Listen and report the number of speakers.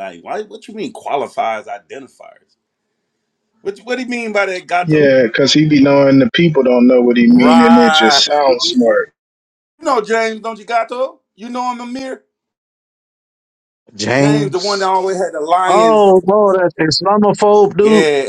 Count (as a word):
three